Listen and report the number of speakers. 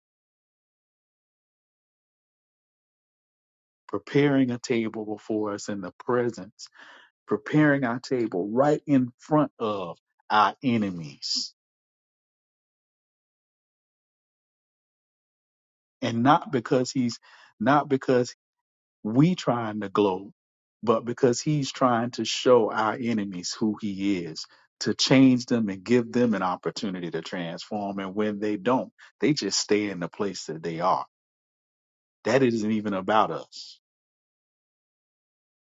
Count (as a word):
one